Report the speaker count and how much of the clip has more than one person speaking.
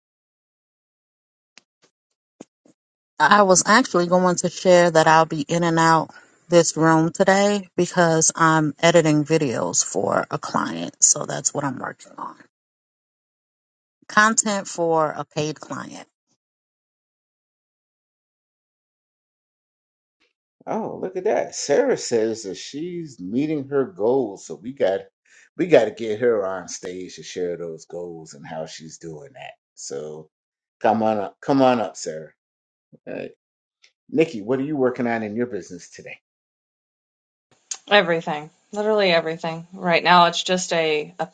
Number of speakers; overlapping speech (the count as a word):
three, no overlap